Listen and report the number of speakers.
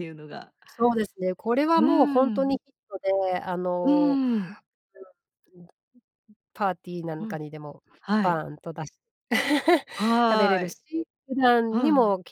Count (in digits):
2